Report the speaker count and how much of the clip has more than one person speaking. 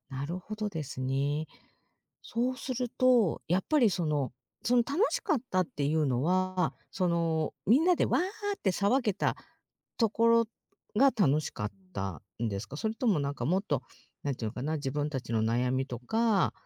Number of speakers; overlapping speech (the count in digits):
1, no overlap